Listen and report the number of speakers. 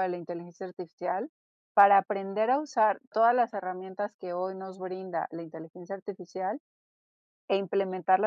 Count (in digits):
1